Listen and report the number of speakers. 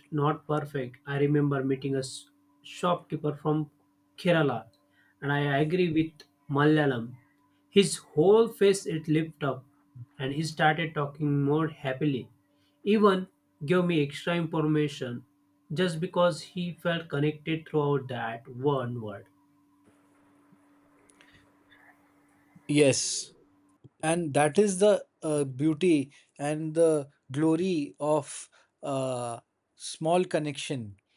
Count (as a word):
two